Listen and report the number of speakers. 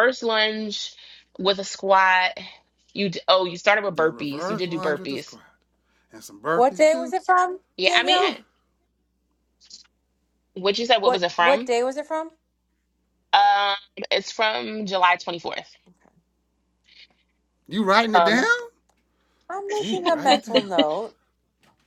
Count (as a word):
three